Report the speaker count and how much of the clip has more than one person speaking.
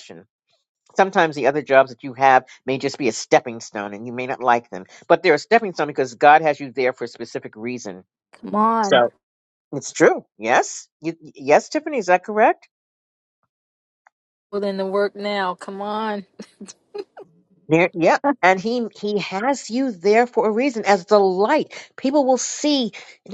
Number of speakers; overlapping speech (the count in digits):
2, under 1%